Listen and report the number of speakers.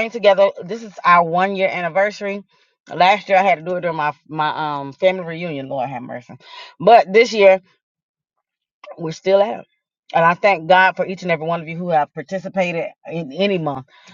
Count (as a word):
one